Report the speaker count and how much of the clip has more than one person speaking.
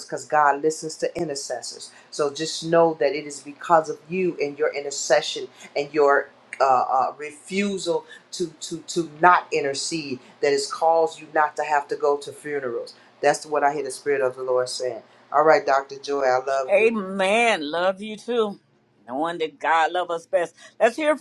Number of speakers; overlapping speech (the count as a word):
two, about 1%